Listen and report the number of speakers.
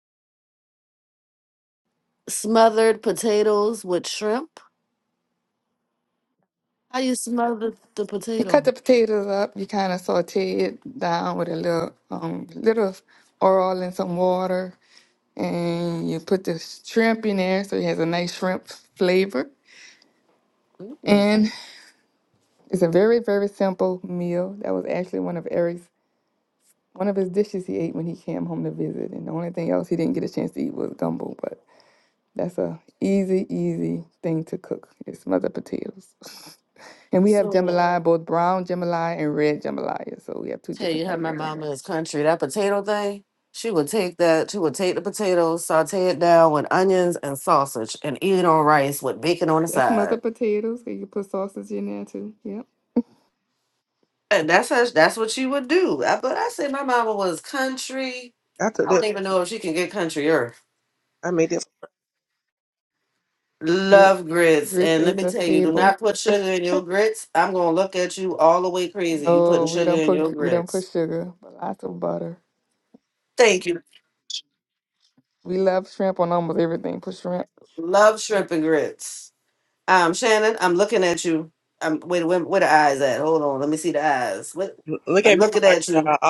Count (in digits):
3